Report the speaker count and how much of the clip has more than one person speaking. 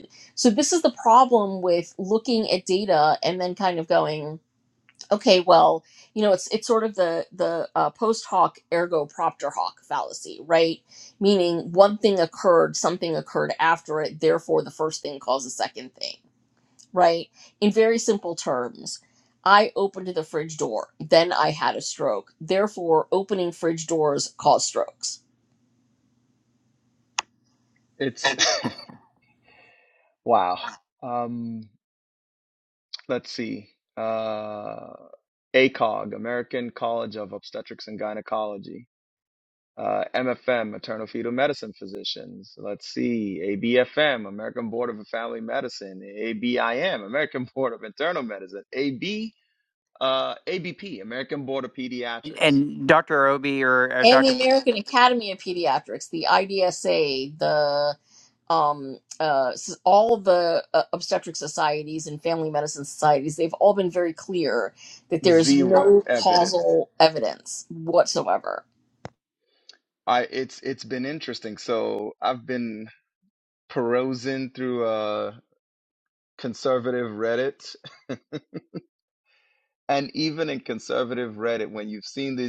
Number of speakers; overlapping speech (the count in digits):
3, about 2%